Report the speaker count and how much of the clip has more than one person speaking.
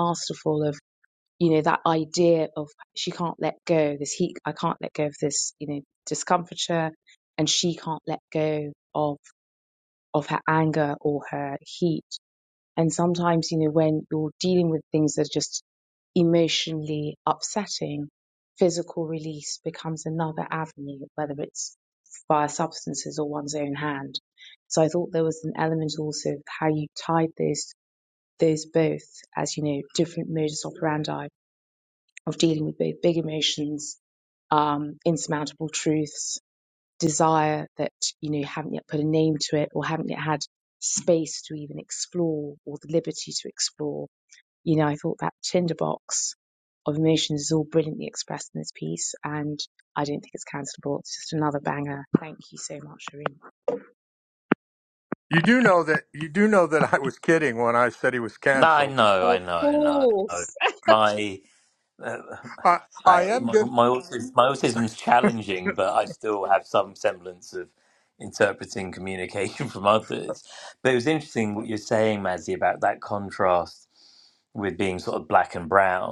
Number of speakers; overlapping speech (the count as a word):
three, about 3%